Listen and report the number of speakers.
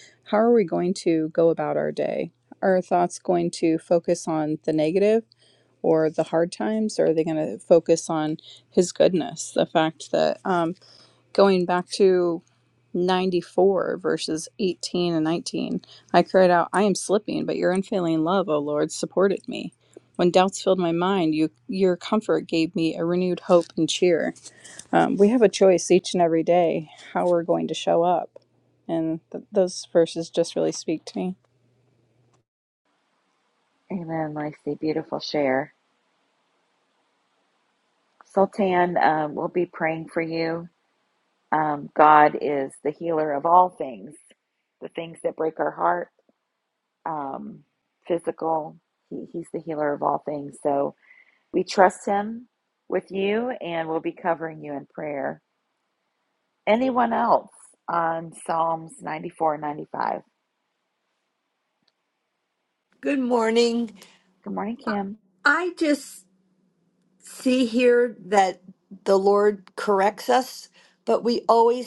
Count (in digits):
3